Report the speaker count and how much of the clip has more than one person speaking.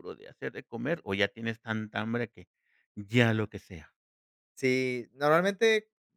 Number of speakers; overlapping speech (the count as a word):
two, no overlap